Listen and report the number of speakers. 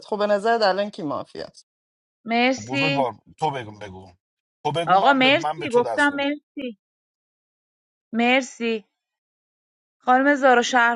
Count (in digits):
3